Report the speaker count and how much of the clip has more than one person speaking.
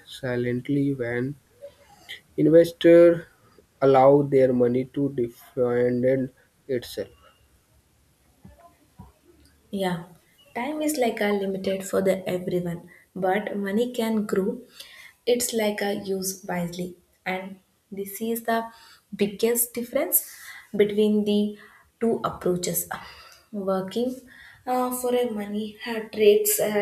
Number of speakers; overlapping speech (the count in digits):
2, no overlap